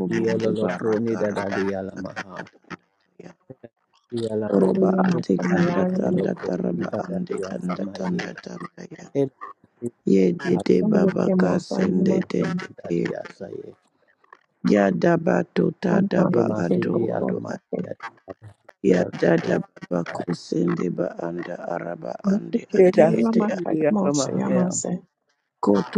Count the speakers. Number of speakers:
3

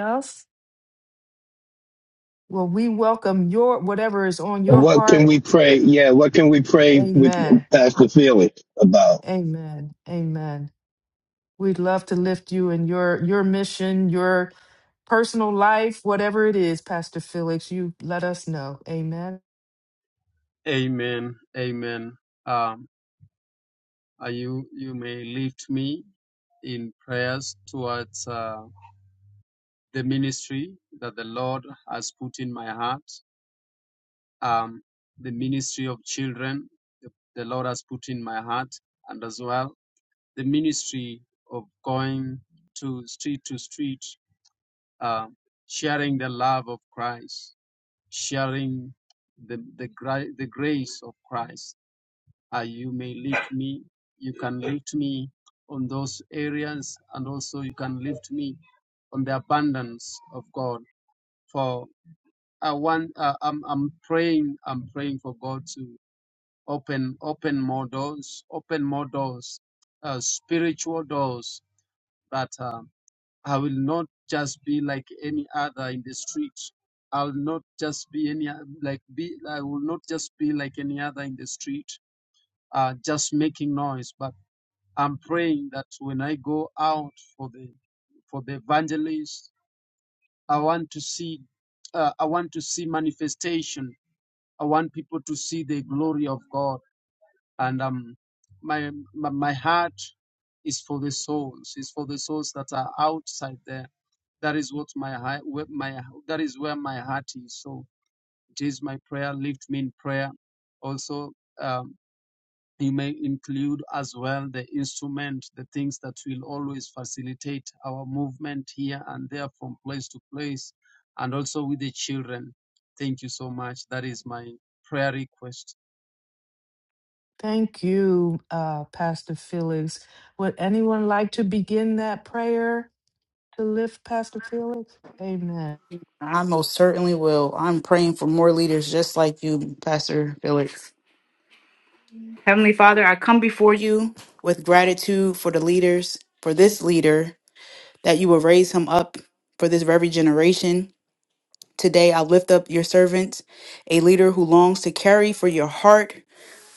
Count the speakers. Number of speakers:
4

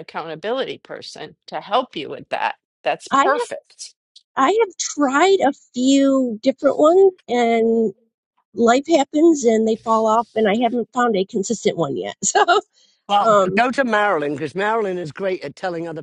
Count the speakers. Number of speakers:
3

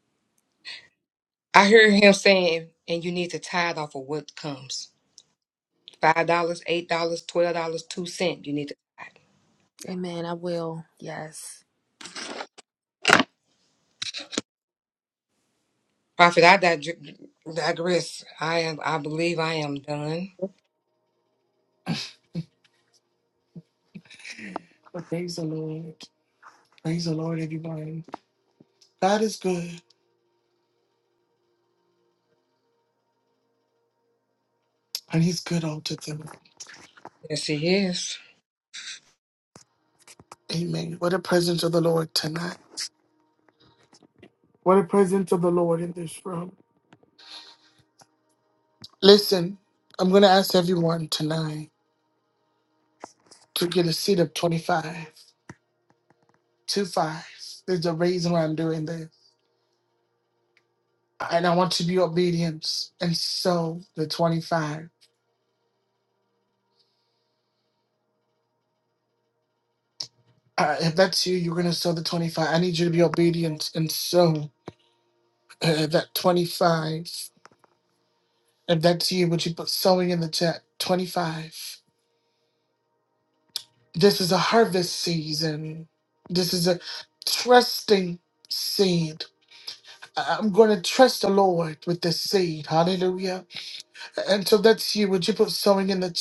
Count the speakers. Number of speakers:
3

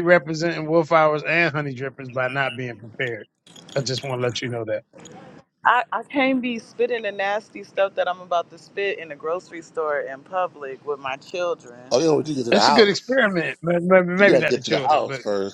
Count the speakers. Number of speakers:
3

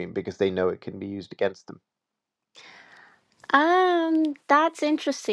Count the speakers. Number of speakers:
2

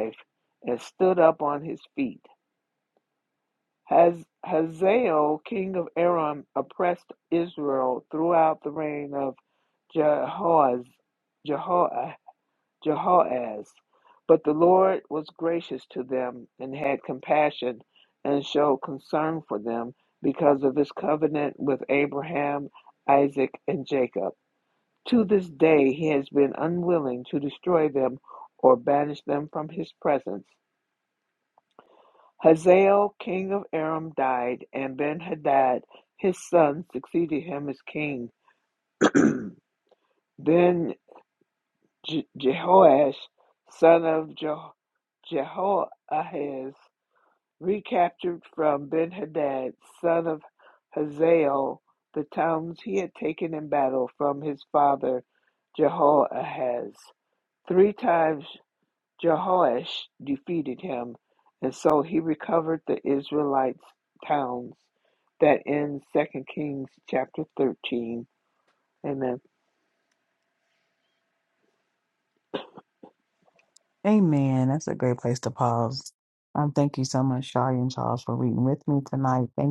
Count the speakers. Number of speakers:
2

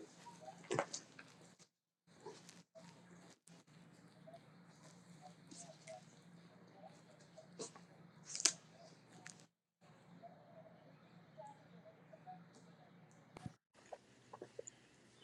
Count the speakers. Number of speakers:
0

